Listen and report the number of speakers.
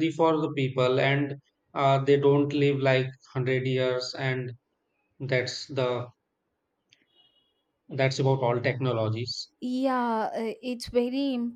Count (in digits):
2